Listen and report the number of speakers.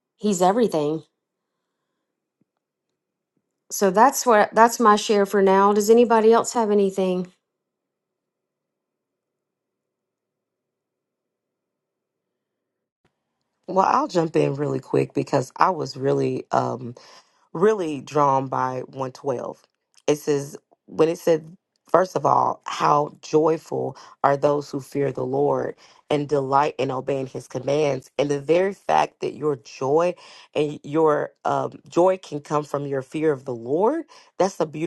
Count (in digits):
2